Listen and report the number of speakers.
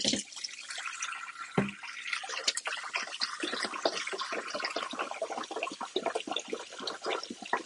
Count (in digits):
0